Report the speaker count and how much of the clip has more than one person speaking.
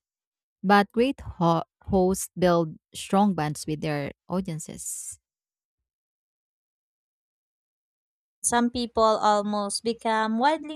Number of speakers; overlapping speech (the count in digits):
2, no overlap